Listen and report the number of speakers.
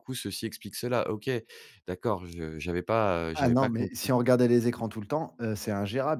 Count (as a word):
two